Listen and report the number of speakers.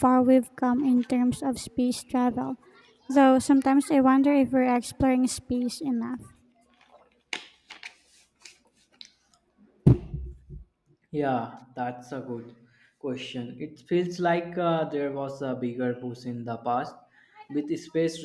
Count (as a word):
two